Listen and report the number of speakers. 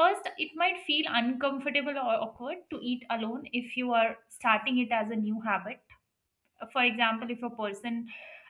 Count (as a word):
one